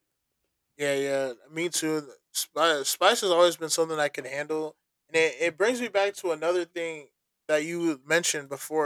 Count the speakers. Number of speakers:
one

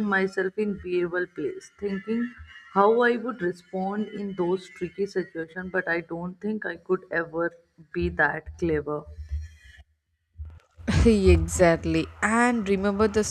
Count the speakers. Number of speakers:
two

